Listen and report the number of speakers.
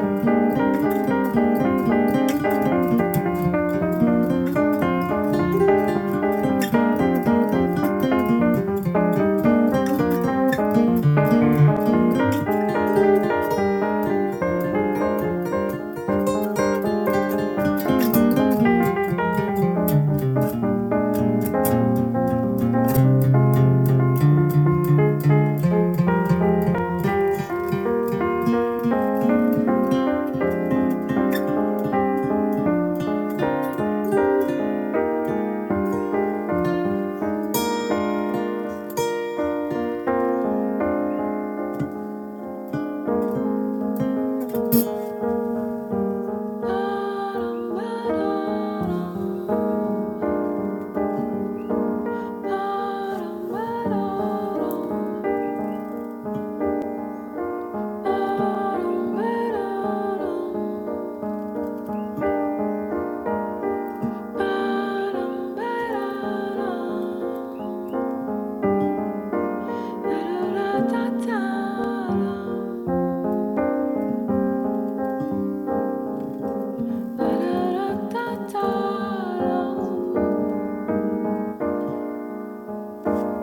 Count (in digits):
1